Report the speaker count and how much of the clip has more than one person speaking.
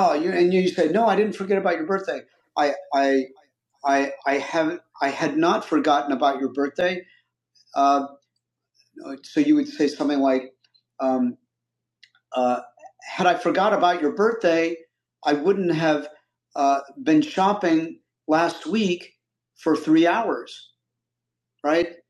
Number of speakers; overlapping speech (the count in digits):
1, no overlap